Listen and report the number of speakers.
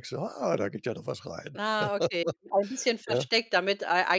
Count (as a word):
two